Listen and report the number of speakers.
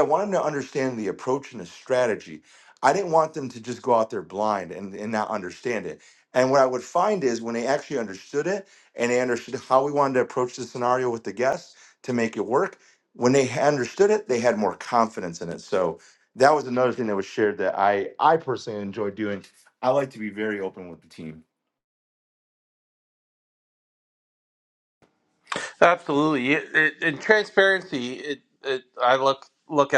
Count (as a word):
two